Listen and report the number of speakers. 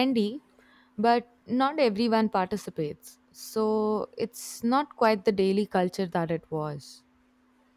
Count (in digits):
1